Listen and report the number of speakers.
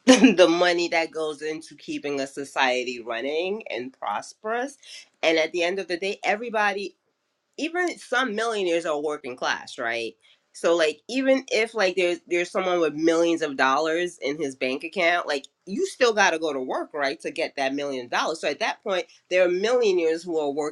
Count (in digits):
1